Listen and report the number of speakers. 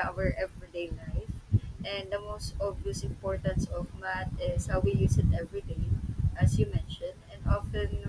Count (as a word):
one